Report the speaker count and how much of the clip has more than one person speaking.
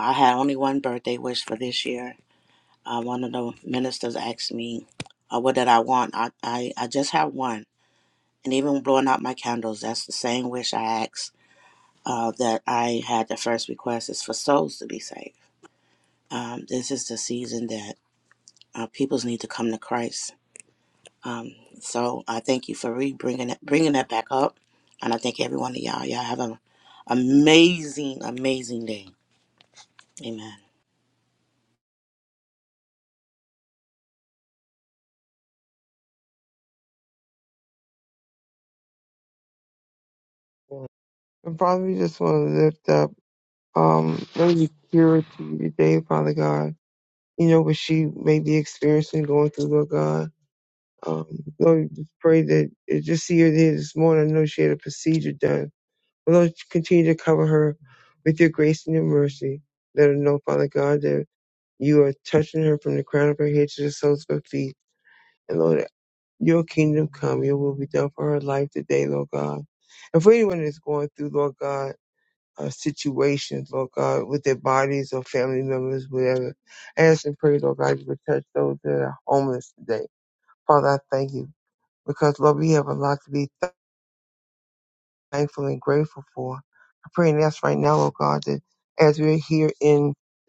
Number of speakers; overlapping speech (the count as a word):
two, no overlap